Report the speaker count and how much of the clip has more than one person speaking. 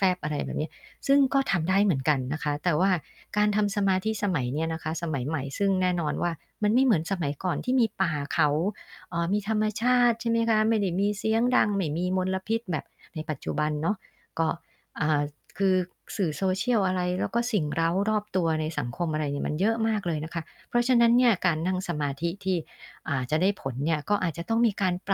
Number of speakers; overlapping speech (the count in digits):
1, no overlap